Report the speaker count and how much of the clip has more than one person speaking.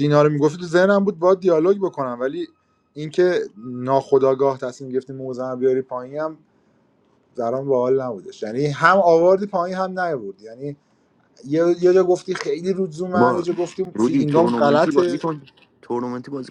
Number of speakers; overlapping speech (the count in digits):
2, about 10%